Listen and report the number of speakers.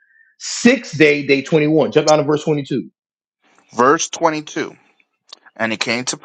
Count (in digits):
2